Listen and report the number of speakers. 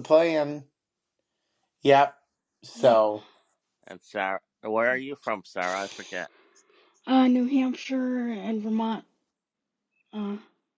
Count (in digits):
3